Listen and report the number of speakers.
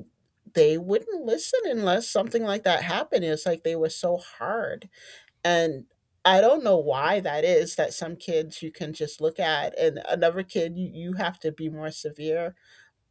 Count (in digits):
1